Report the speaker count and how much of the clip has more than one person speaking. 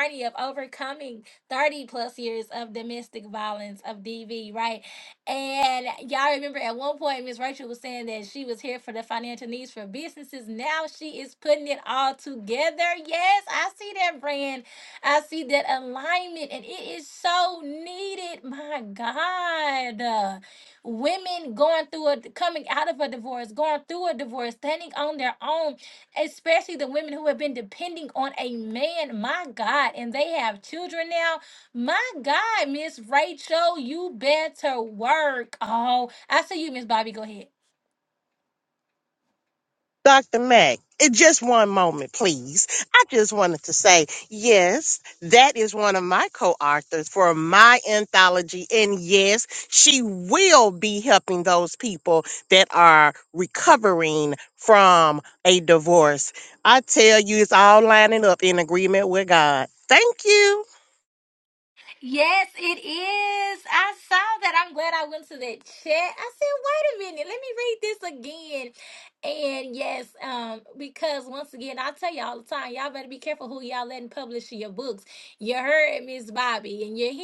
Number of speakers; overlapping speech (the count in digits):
2, no overlap